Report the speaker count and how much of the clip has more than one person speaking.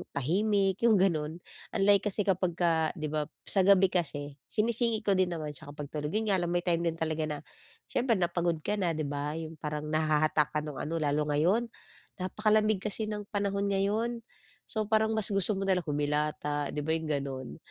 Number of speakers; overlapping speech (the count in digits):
1, no overlap